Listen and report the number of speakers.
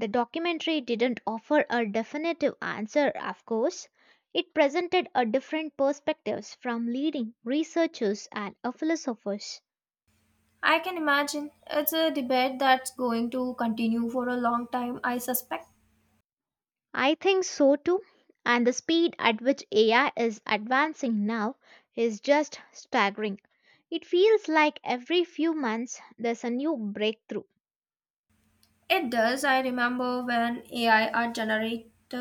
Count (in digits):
2